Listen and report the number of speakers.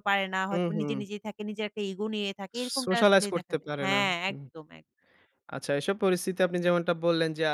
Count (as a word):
two